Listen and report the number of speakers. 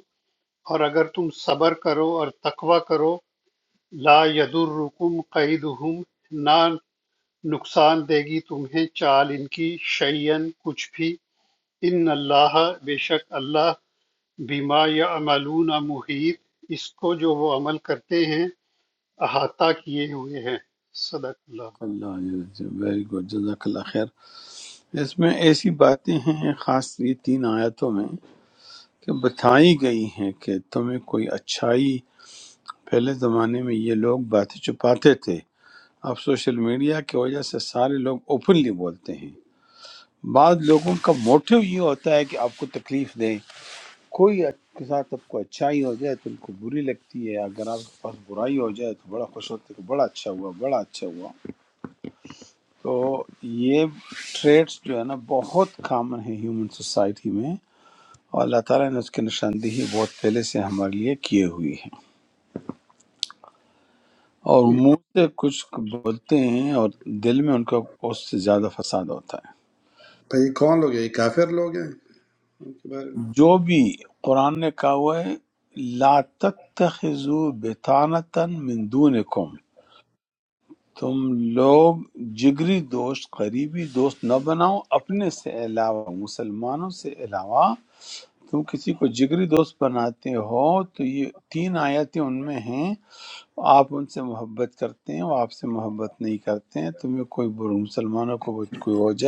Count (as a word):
three